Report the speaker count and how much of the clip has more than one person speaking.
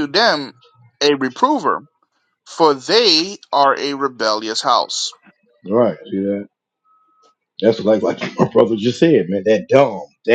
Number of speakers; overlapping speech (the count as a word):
two, no overlap